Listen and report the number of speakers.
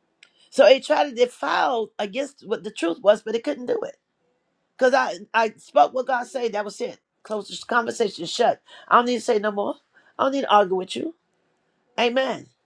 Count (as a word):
one